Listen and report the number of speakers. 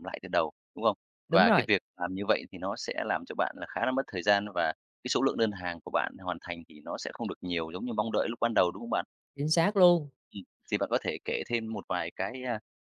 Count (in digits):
2